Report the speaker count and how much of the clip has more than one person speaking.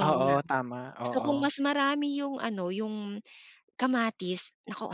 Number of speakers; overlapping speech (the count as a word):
two, about 17%